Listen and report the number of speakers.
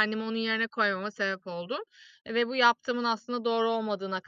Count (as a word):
one